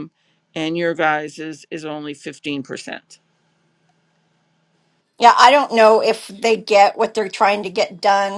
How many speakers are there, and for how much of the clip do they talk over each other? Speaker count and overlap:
2, no overlap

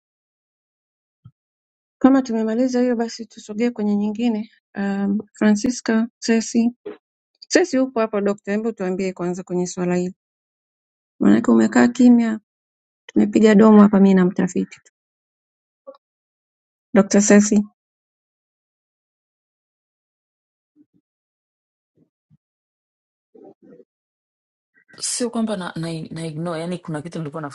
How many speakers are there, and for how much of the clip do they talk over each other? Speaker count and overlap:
2, no overlap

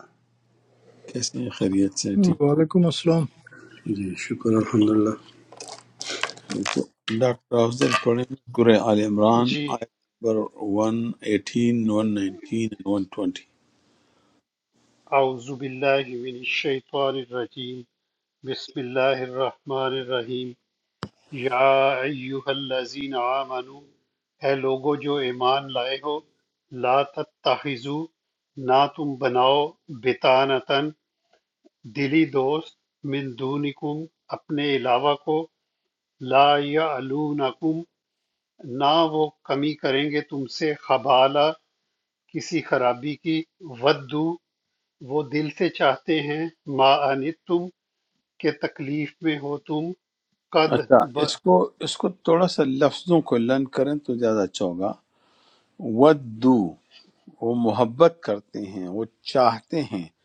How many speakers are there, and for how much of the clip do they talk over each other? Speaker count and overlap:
4, about 2%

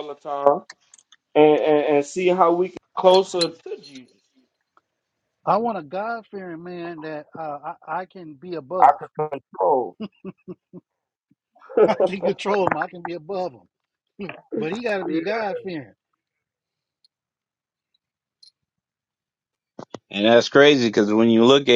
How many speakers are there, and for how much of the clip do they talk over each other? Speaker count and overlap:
3, no overlap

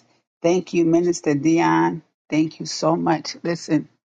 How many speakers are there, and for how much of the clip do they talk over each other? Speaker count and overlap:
1, no overlap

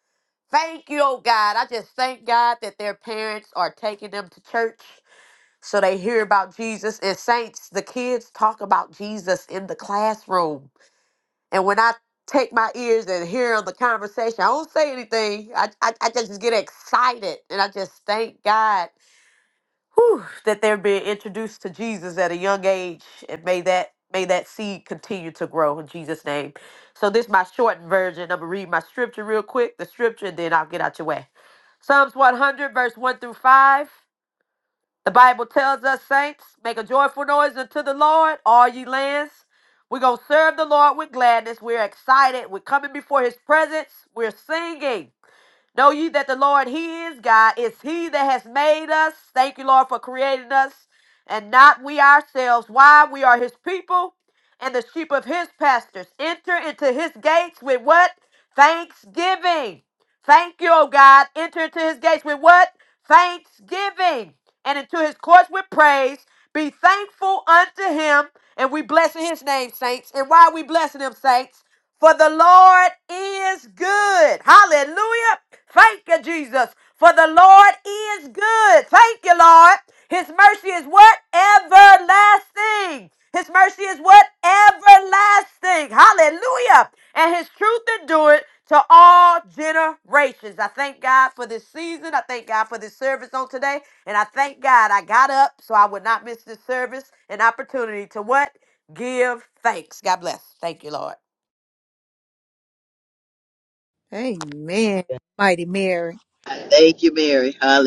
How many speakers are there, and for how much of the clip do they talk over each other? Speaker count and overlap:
3, no overlap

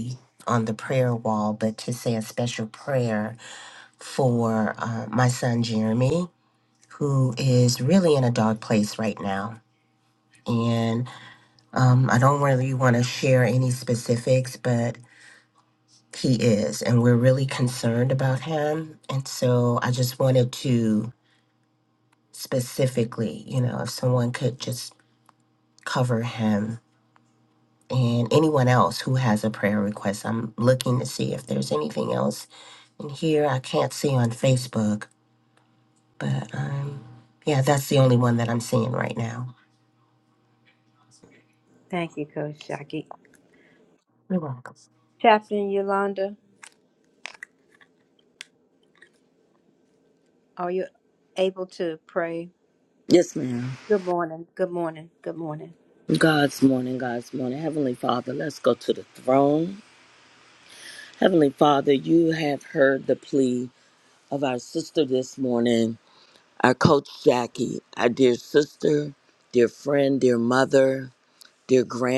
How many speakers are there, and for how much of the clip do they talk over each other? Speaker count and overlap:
3, no overlap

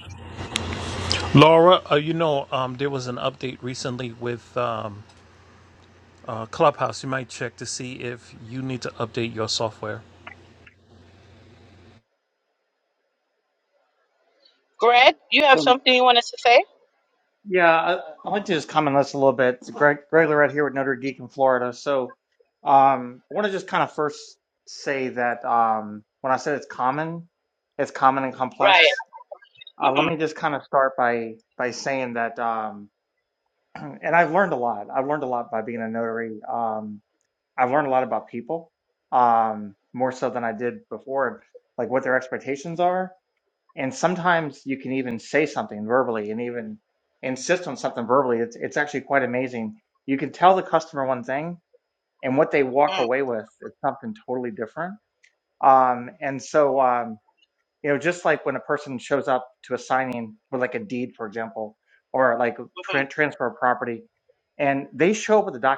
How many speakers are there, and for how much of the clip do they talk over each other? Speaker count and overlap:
3, about 2%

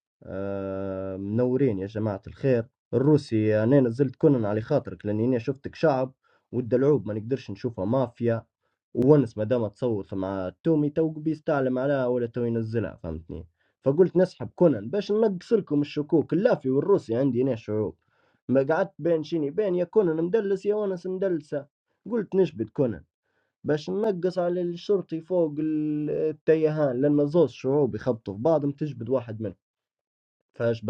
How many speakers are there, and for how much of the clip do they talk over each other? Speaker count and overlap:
1, no overlap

